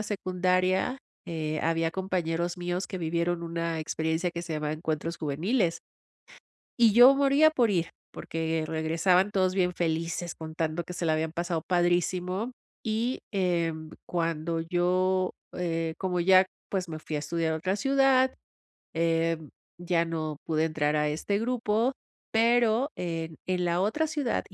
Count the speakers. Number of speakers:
one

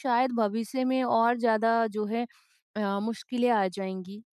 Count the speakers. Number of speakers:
one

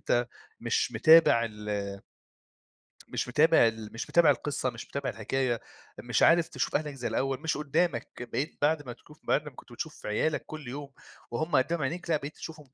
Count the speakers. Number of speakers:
one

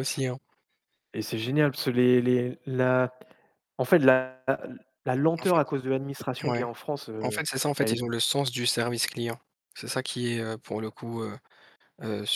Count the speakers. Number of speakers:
two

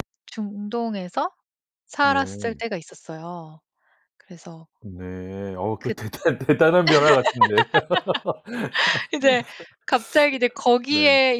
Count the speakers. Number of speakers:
two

